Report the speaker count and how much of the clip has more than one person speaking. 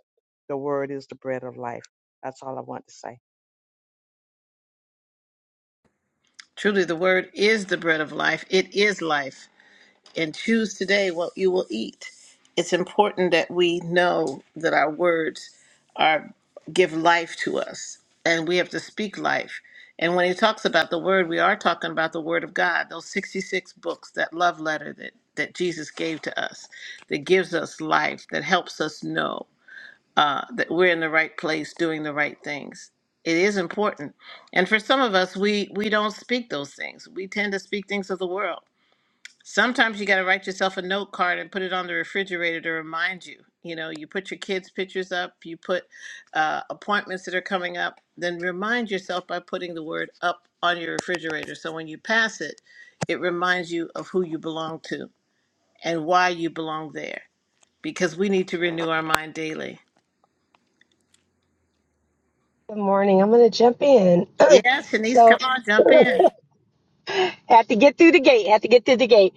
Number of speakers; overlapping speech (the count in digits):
3, under 1%